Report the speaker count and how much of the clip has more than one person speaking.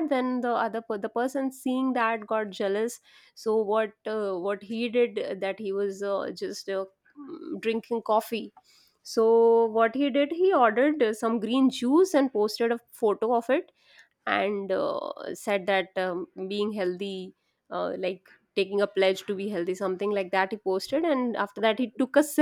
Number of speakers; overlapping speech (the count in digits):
1, no overlap